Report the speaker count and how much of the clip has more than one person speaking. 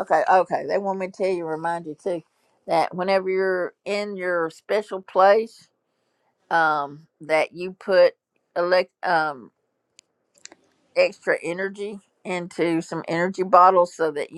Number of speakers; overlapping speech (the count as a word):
one, no overlap